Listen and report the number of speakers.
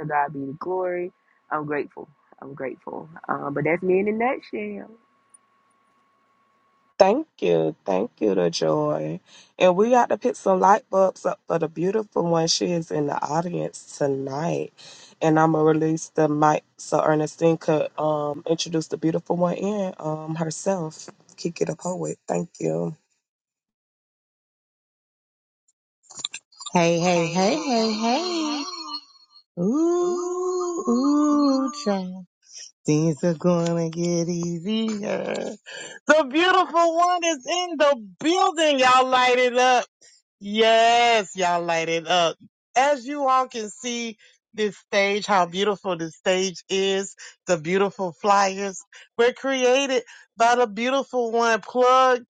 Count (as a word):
three